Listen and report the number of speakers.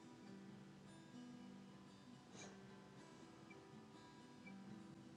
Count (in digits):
0